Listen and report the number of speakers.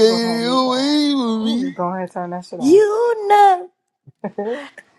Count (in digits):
3